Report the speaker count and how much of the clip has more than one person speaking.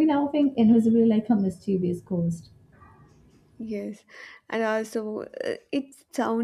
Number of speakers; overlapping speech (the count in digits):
2, no overlap